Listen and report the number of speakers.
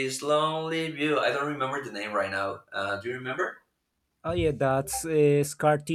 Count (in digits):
2